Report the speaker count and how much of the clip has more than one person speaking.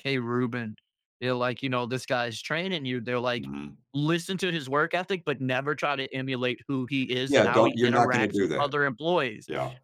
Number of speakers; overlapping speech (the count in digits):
2, about 15%